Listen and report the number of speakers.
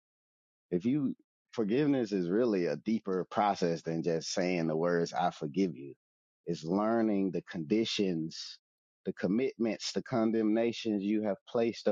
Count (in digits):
1